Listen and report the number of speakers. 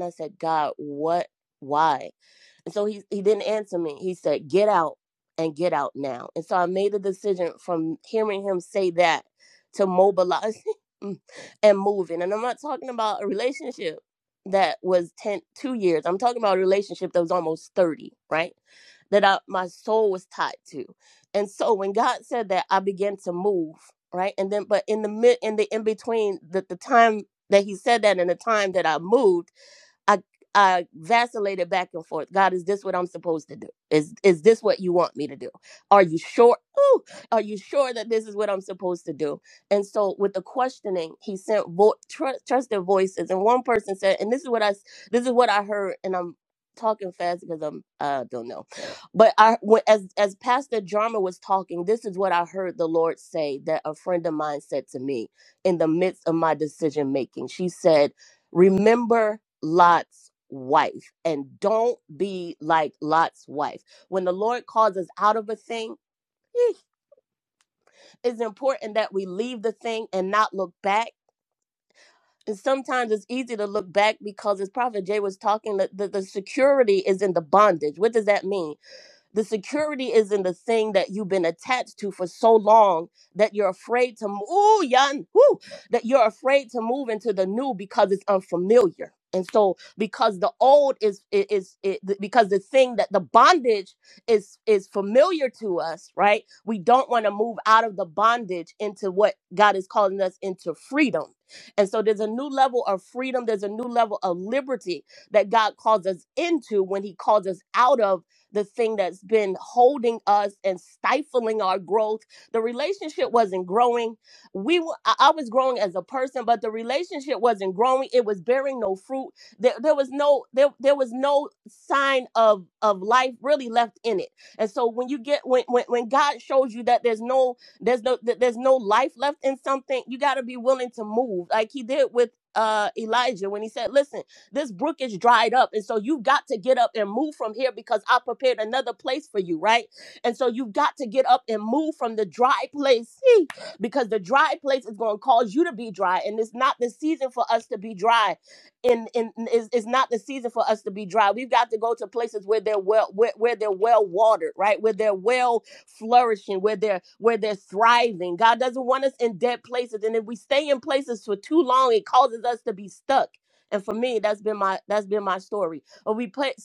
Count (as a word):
one